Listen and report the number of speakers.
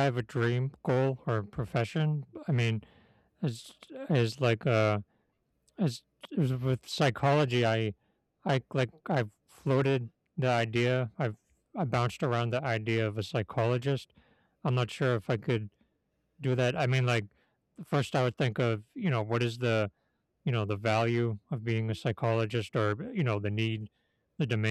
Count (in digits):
1